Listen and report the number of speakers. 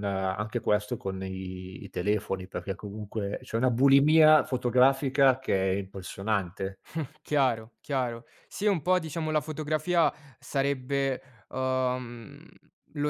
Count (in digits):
2